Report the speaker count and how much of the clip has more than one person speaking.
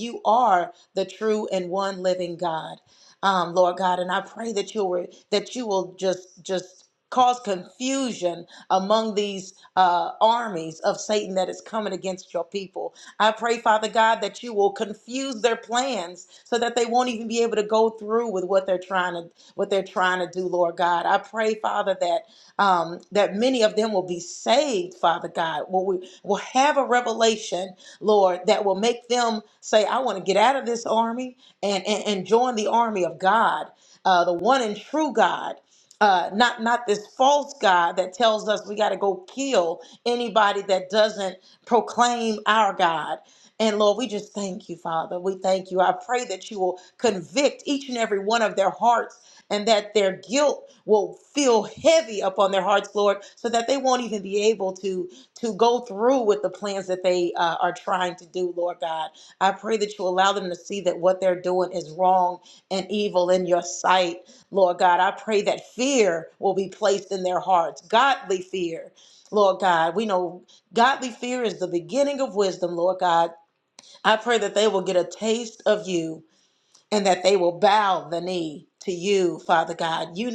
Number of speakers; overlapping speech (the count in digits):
1, no overlap